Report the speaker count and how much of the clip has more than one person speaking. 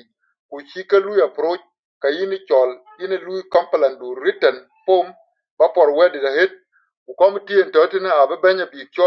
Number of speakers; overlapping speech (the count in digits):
1, no overlap